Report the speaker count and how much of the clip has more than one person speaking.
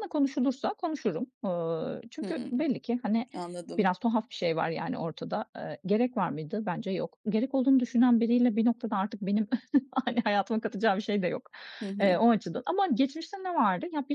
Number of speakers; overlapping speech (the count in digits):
2, about 5%